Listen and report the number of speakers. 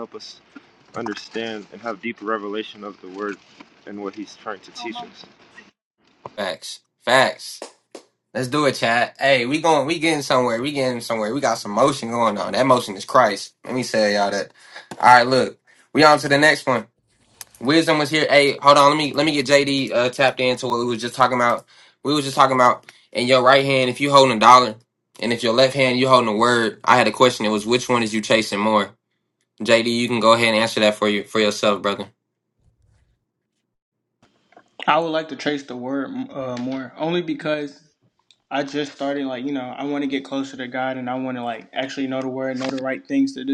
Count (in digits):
3